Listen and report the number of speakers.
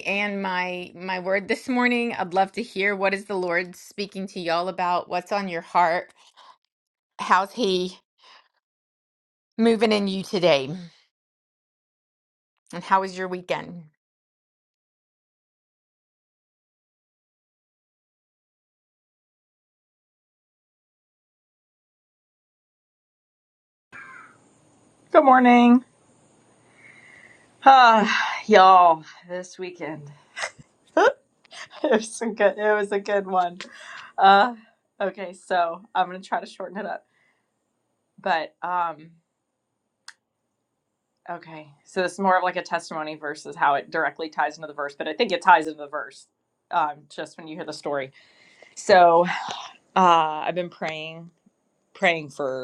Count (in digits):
2